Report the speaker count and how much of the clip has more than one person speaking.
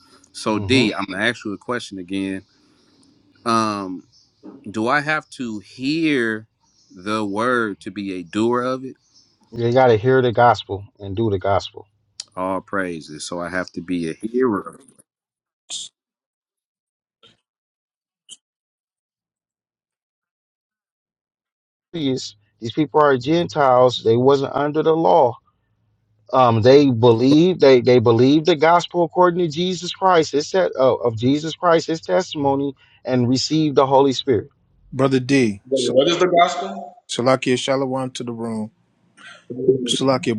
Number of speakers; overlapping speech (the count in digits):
4, about 2%